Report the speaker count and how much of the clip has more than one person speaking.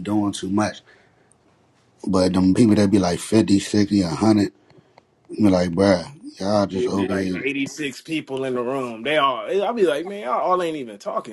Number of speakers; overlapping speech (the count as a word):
two, about 7%